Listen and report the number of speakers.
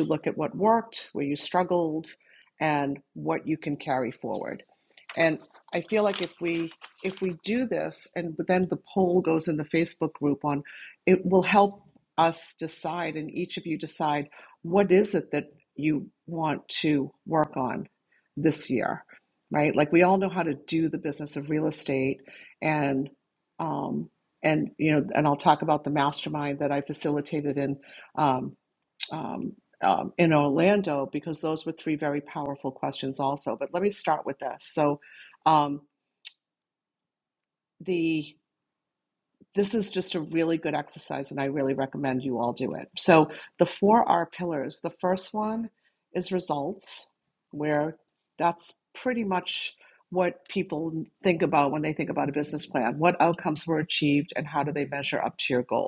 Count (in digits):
1